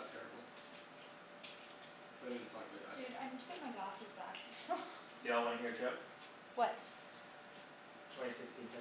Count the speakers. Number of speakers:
3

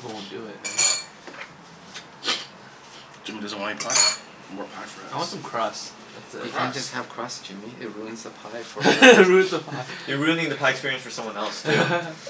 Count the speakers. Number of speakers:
4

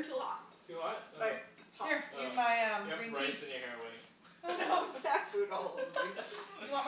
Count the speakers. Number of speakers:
3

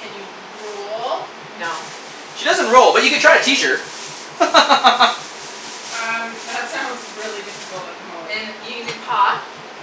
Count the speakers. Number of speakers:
3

